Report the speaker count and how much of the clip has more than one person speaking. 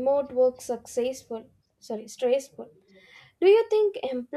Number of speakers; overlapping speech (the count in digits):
1, no overlap